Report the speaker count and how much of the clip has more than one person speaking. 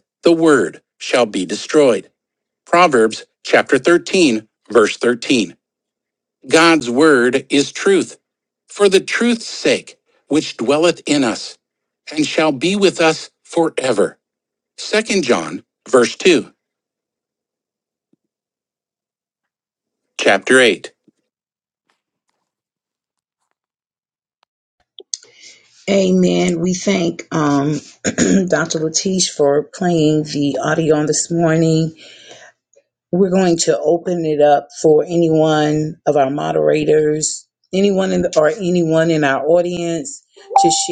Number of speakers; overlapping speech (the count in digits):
2, no overlap